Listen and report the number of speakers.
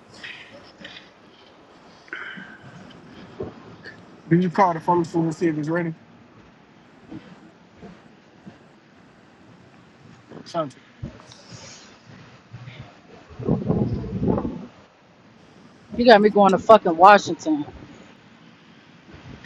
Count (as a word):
two